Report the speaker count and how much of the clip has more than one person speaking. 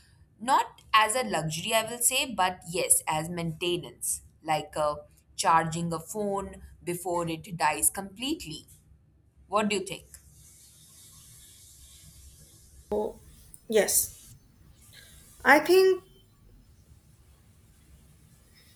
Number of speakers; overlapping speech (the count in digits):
2, no overlap